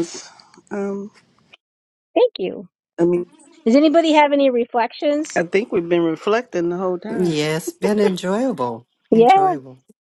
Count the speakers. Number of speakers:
three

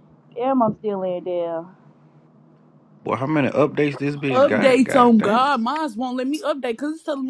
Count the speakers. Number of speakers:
three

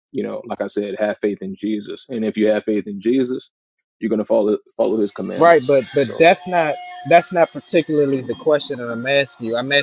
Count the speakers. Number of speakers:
two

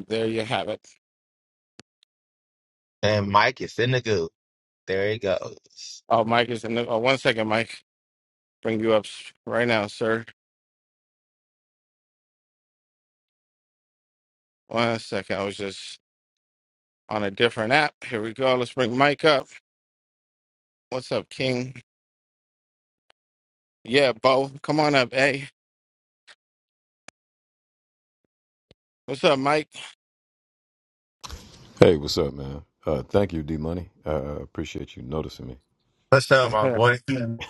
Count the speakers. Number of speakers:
three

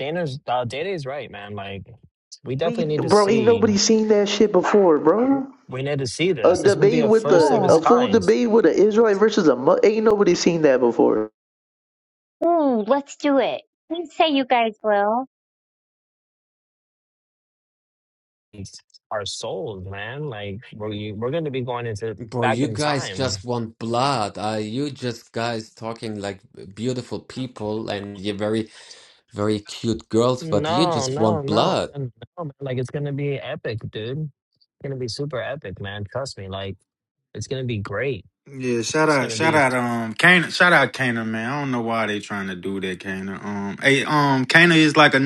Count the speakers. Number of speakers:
five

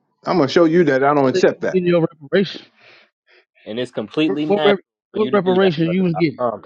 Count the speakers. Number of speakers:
three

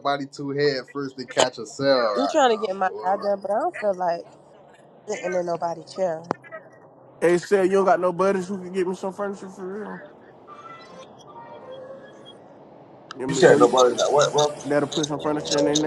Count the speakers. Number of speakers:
four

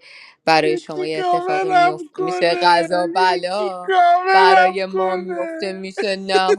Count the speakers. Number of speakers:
two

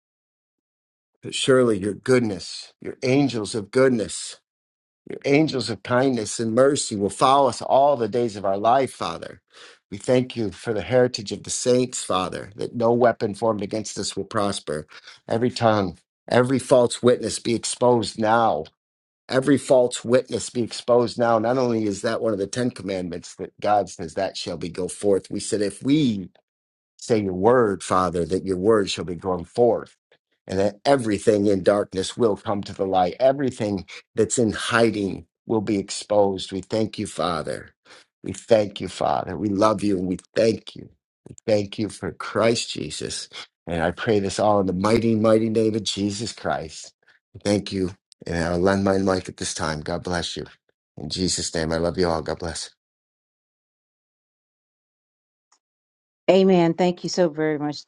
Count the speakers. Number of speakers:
two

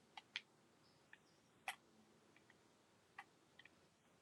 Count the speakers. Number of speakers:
zero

